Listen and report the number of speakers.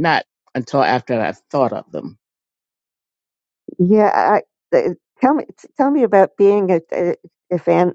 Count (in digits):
2